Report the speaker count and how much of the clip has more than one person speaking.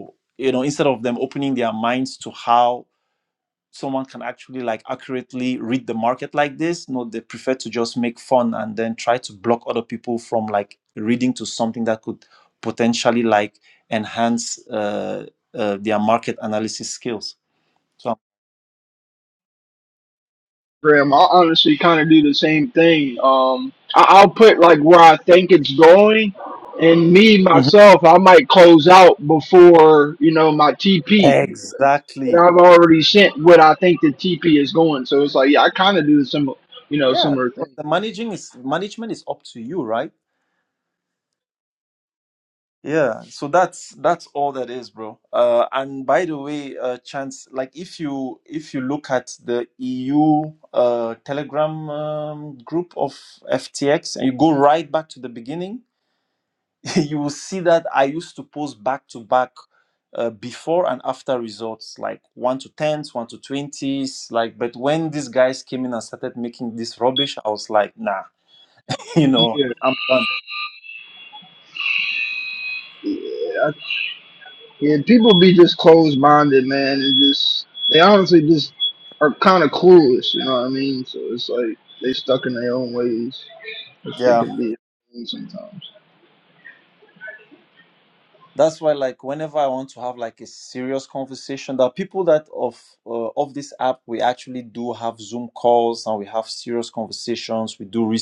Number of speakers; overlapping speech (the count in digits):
2, about 2%